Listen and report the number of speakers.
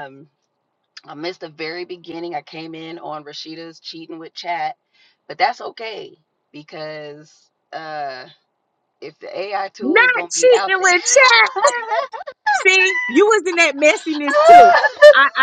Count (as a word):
two